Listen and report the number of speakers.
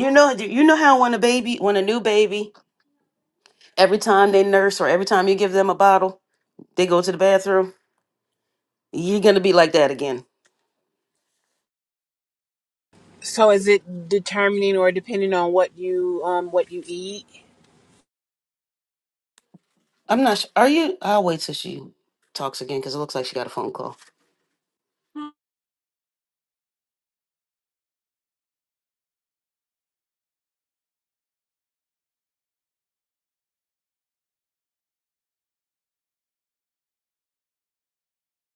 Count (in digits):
2